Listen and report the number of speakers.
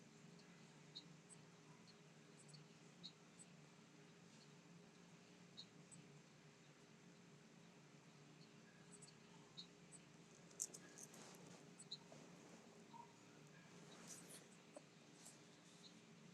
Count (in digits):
0